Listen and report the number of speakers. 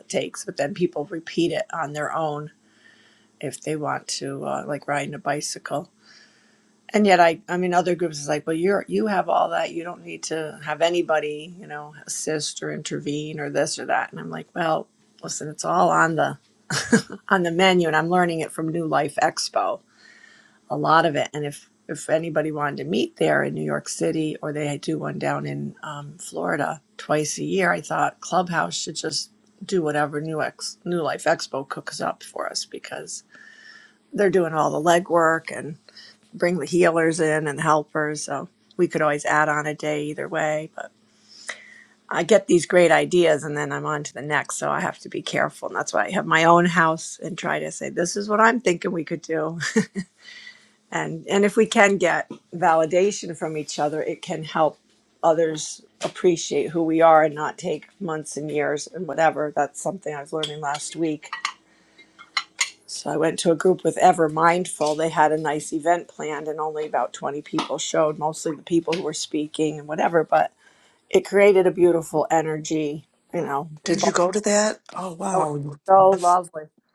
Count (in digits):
2